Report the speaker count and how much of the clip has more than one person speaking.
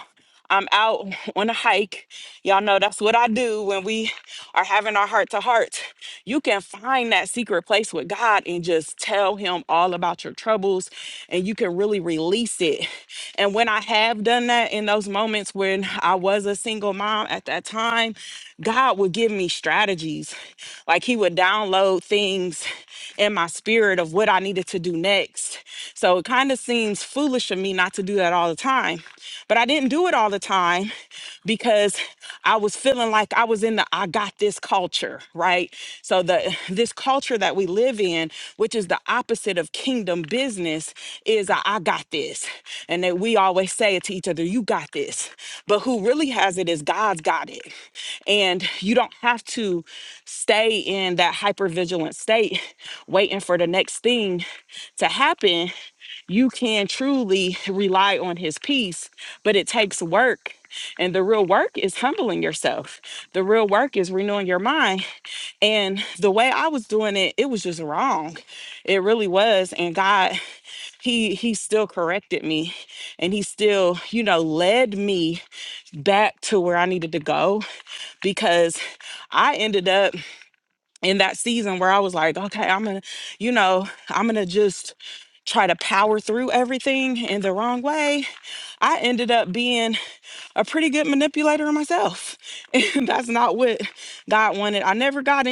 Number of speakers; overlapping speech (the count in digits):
1, no overlap